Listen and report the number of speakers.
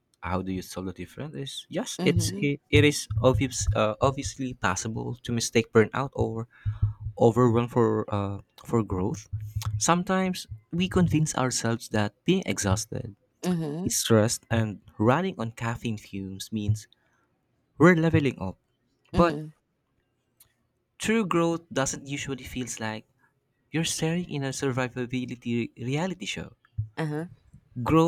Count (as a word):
two